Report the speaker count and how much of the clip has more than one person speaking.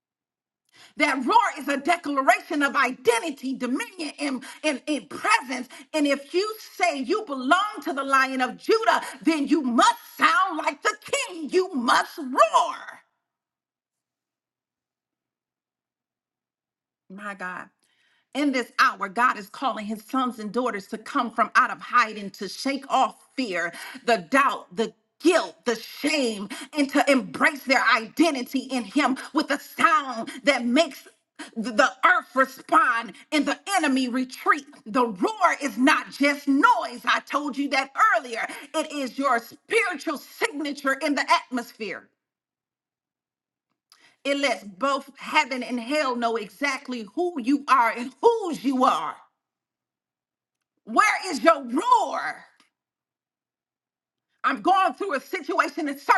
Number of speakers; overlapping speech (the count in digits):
1, no overlap